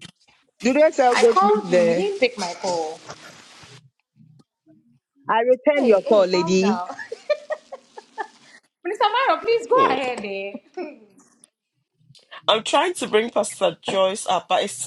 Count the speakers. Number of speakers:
three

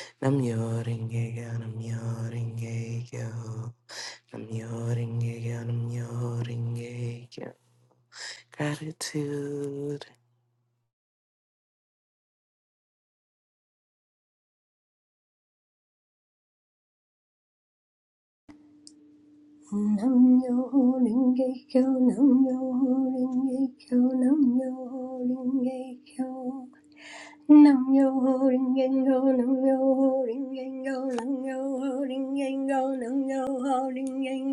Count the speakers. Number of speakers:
two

